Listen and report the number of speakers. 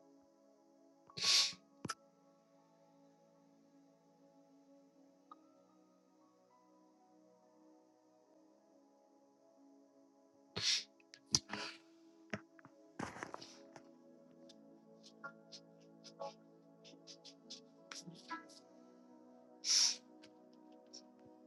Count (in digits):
0